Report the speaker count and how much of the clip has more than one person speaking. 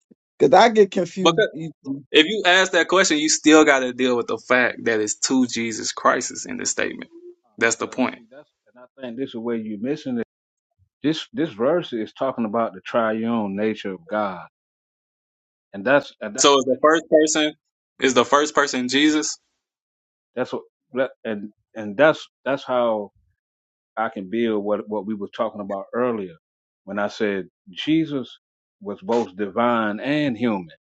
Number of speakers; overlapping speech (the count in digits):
3, about 3%